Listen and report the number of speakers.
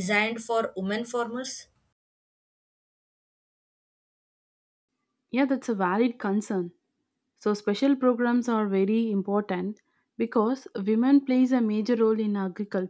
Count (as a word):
two